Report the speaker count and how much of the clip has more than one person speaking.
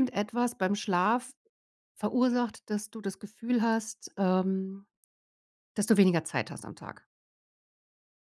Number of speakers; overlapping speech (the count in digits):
1, no overlap